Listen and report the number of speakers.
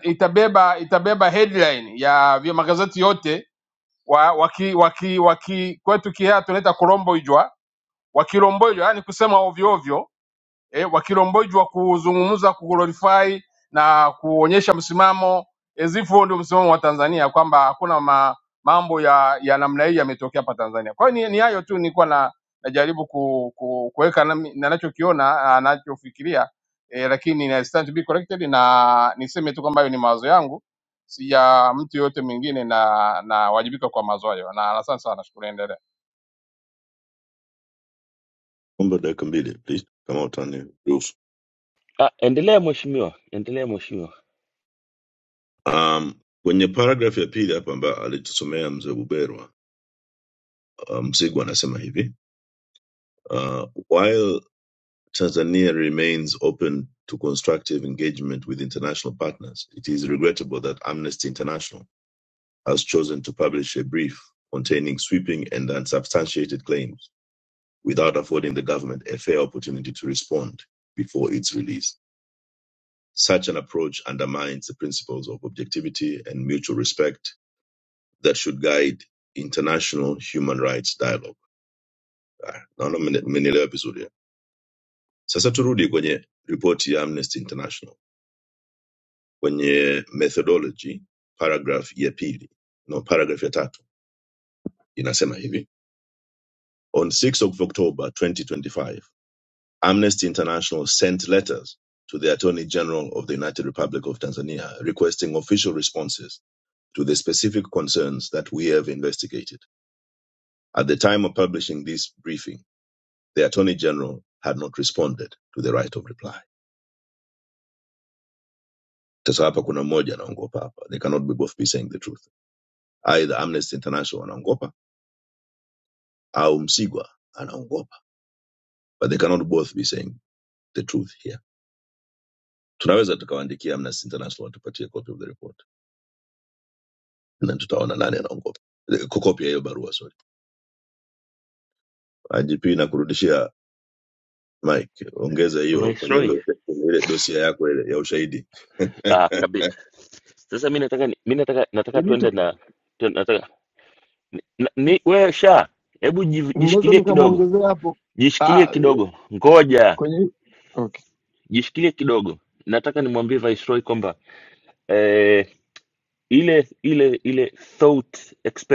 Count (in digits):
4